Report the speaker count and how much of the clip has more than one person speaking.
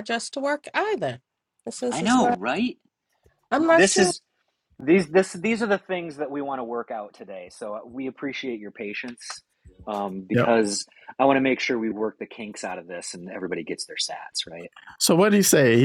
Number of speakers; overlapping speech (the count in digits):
3, about 7%